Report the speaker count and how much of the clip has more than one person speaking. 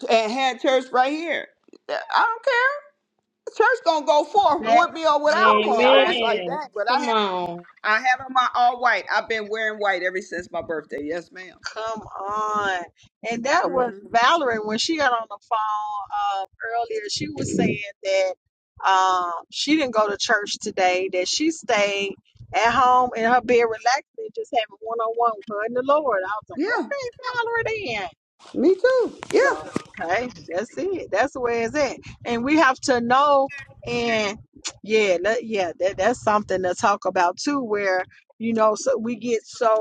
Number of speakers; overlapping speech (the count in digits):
3, about 6%